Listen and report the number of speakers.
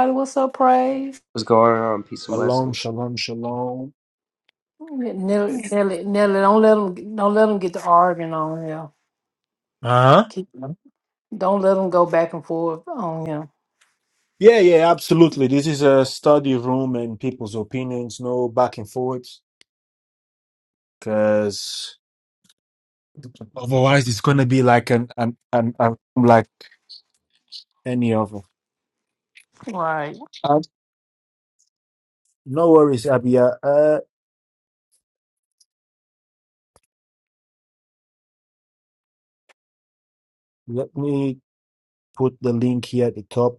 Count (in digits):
3